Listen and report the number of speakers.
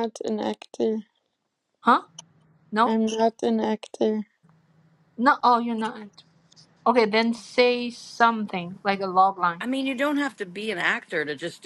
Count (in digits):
3